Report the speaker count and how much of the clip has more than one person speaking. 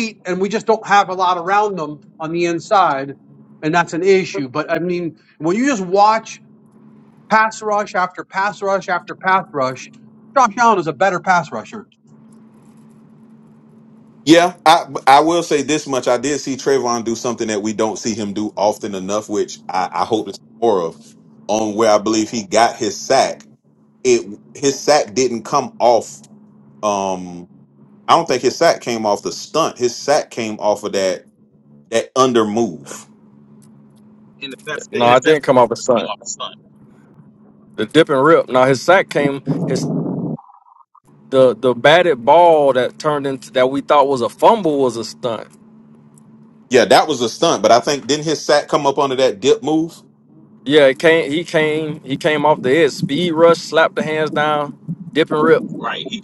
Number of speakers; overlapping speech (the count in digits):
4, about 1%